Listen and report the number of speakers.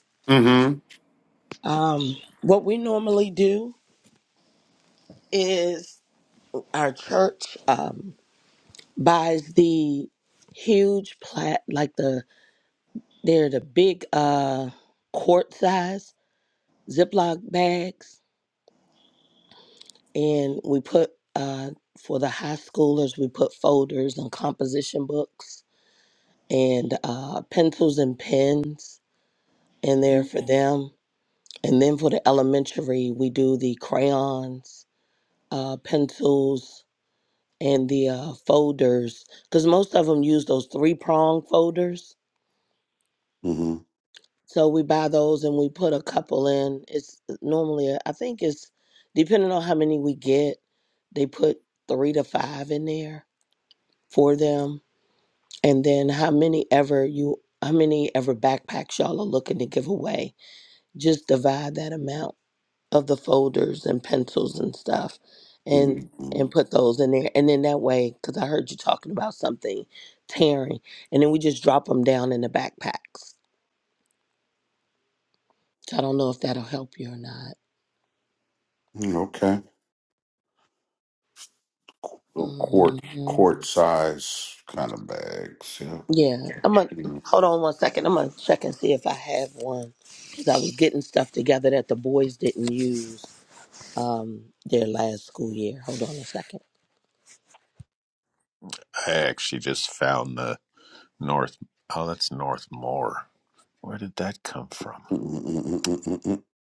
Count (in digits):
3